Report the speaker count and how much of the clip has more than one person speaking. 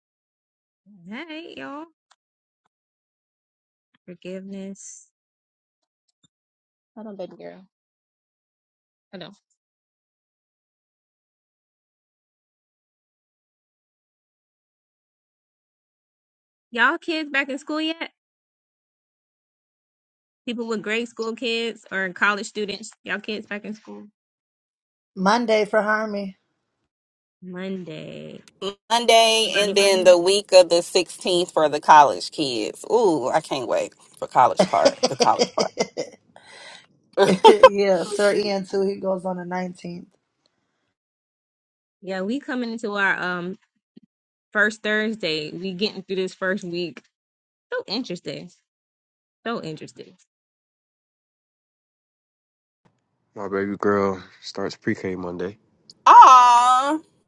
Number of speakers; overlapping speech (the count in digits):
4, about 1%